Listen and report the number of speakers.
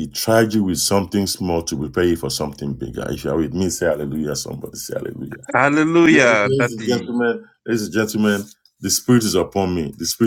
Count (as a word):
two